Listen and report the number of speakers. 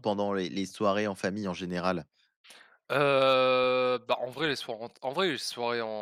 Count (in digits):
2